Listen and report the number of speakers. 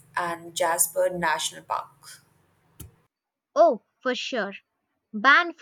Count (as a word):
two